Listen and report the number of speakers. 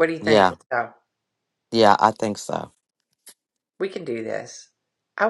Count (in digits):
2